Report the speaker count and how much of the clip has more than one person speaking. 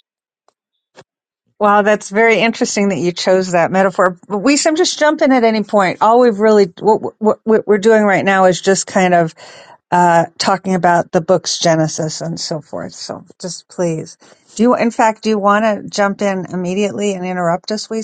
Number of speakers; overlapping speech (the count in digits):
1, no overlap